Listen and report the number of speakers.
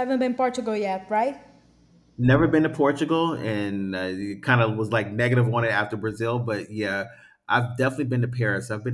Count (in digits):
2